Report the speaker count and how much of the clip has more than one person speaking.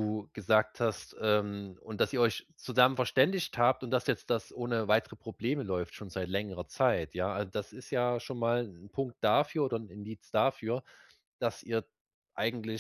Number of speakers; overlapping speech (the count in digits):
1, no overlap